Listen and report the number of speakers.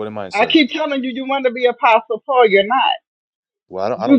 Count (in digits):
2